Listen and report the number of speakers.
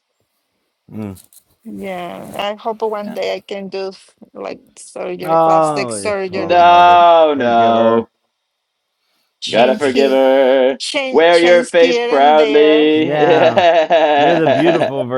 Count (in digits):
3